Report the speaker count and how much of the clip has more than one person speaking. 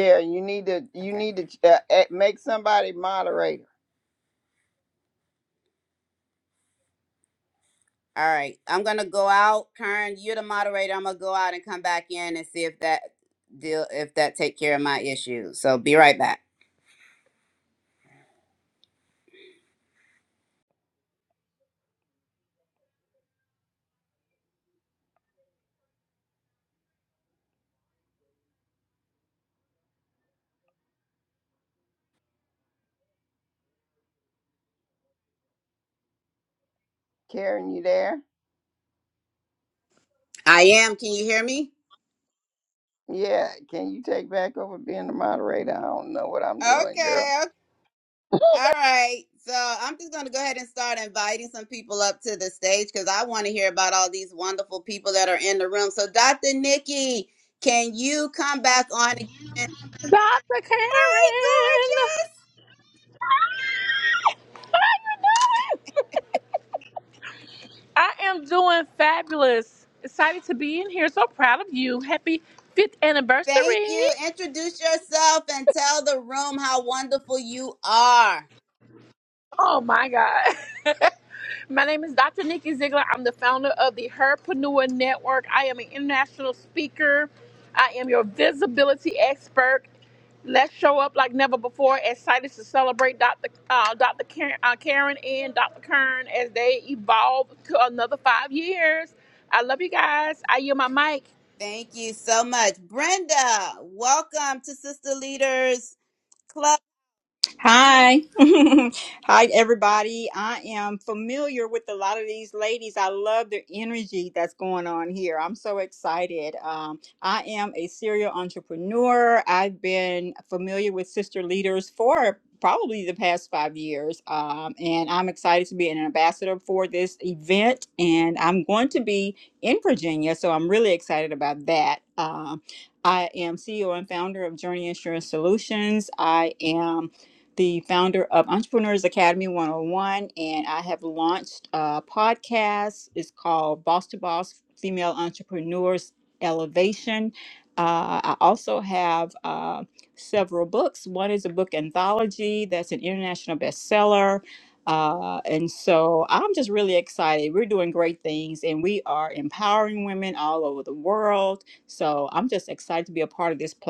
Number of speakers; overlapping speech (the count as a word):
four, about 1%